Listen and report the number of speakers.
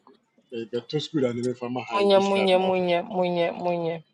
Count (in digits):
2